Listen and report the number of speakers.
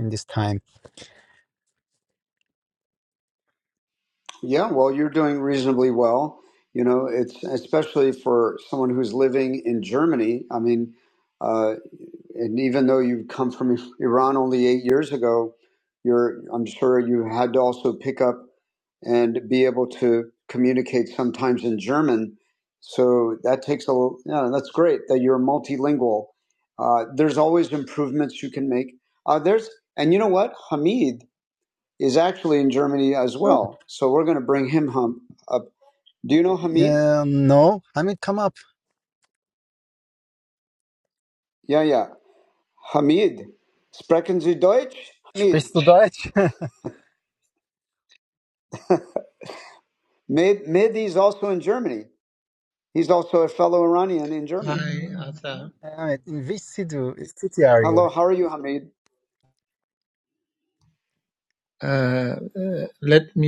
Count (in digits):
3